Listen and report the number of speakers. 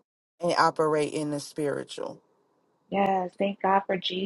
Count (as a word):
two